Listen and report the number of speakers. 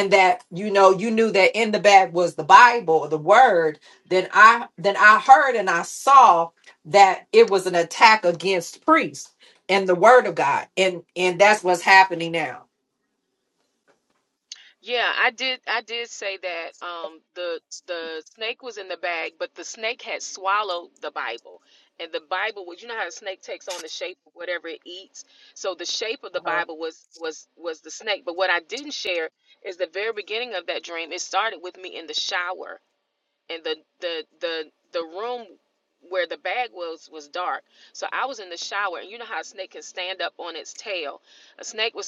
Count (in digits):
2